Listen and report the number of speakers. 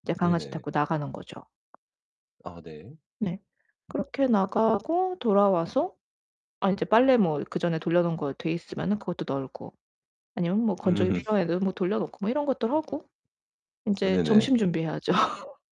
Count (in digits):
2